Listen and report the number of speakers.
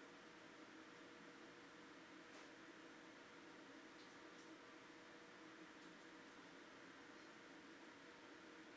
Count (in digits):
0